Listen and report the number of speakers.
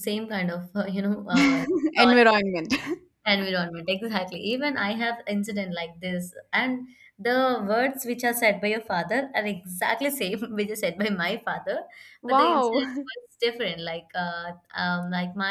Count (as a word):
two